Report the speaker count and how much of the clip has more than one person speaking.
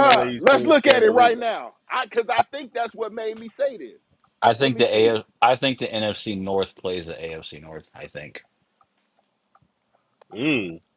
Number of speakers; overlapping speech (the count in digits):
3, about 18%